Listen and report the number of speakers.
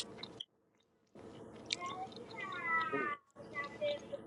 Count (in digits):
0